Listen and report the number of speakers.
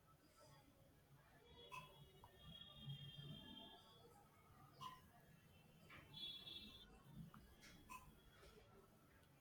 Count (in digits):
0